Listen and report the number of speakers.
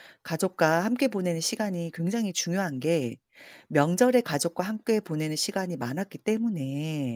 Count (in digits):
1